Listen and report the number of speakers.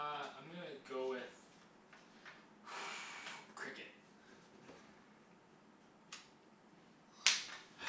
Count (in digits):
1